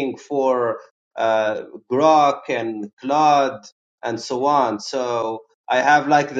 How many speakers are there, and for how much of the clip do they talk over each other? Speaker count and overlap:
1, no overlap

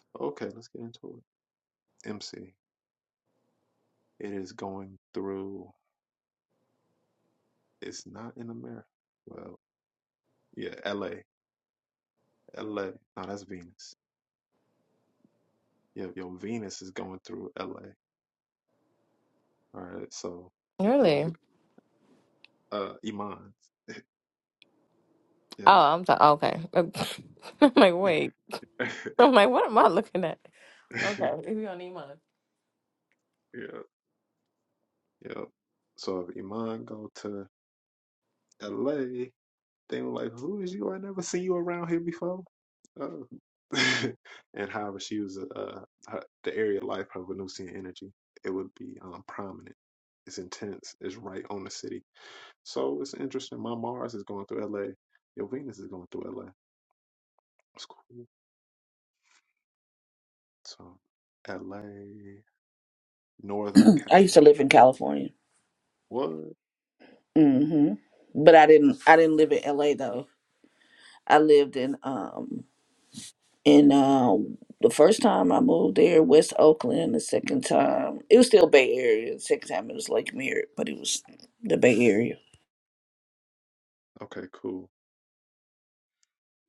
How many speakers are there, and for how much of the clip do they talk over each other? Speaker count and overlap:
3, about 1%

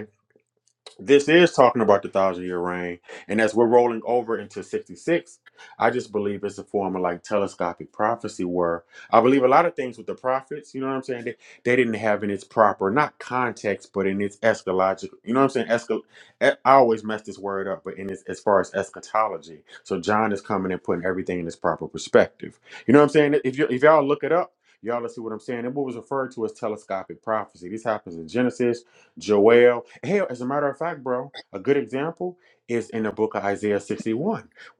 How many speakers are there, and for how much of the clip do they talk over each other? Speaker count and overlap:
1, no overlap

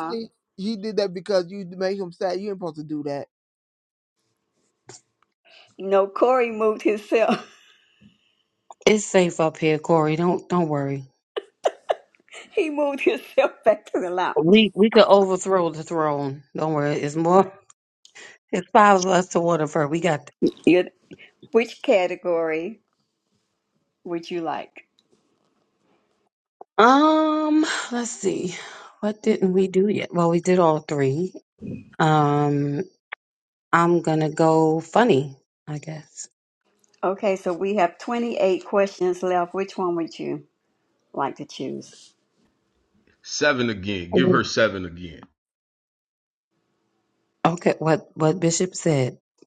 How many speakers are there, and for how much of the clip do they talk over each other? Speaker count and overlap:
4, about 1%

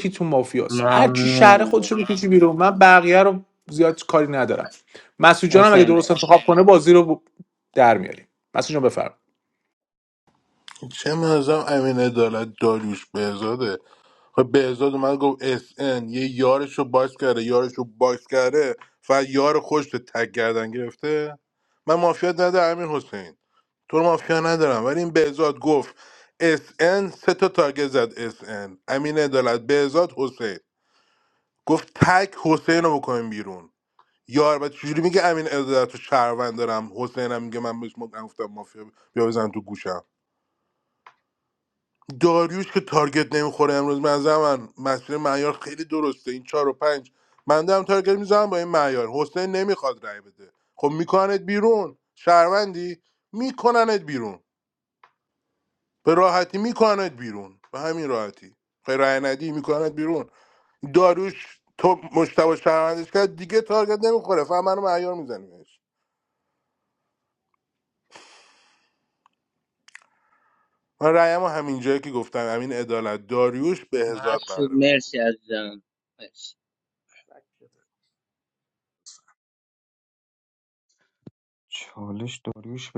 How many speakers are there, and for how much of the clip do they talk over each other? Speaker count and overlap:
4, about 3%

